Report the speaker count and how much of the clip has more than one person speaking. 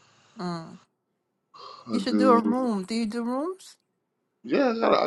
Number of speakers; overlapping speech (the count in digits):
2, about 10%